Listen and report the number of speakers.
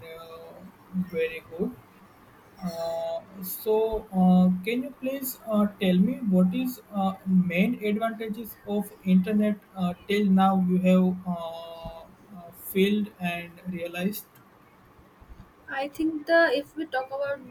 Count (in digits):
2